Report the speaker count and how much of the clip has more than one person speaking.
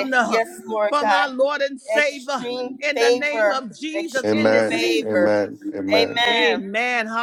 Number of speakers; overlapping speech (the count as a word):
three, about 54%